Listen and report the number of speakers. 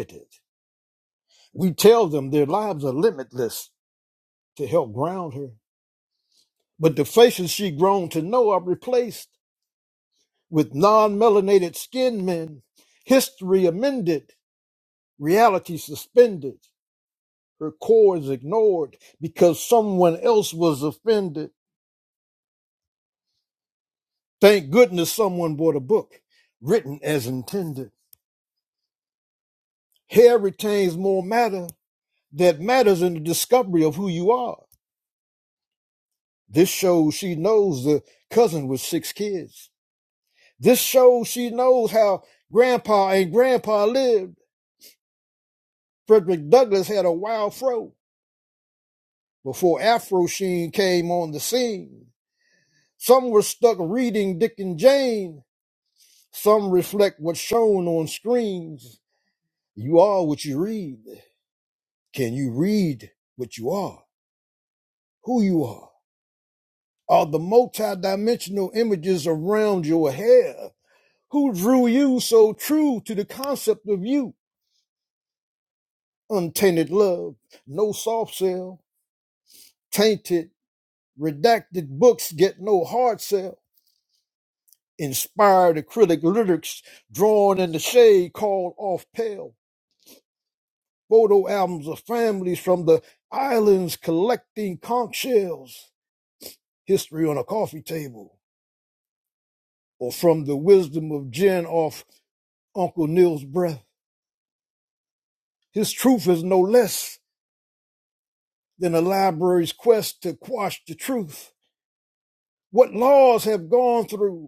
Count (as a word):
one